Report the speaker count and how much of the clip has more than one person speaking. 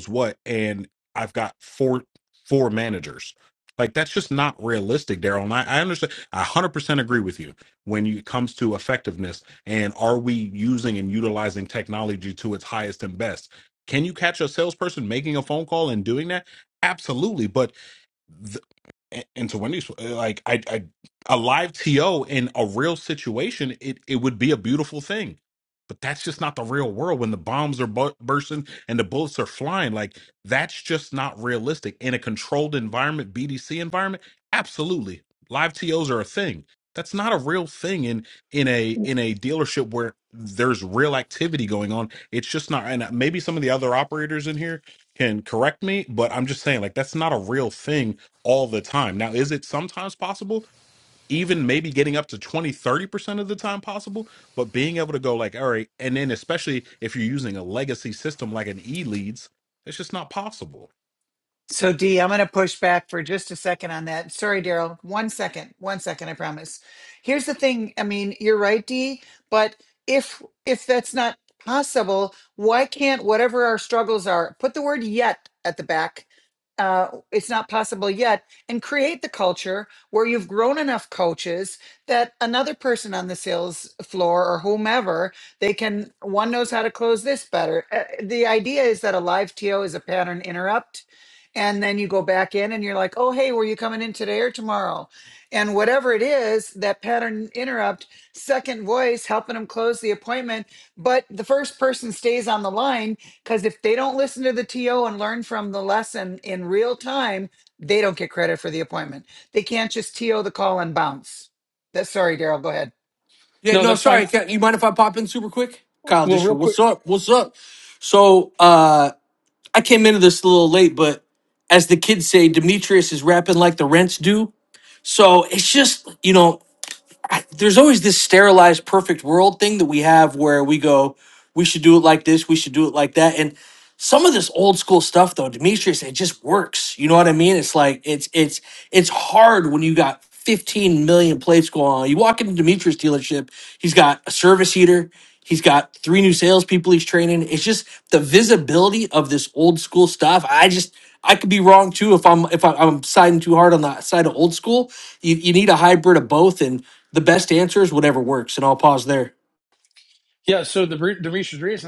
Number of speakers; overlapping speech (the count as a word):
four, about 1%